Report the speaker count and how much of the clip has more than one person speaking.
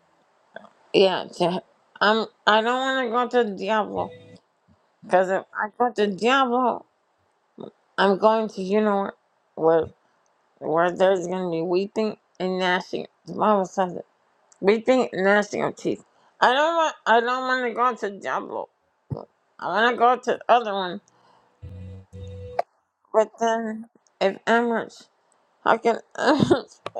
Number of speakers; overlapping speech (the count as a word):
one, no overlap